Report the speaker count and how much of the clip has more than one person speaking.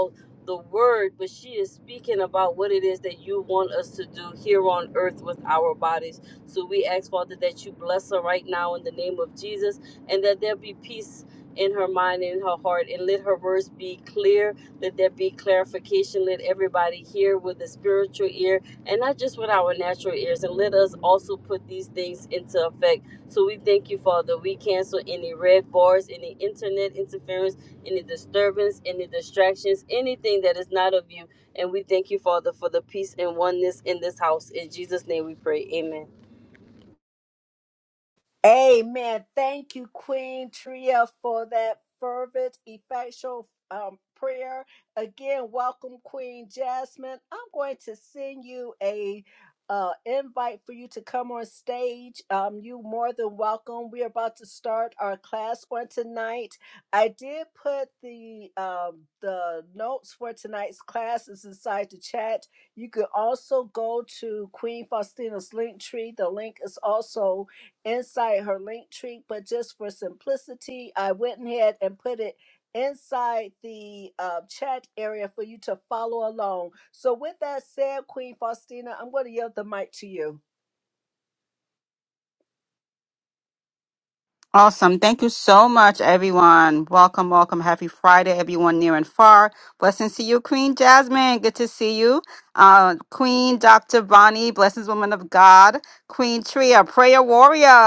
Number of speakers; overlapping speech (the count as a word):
three, no overlap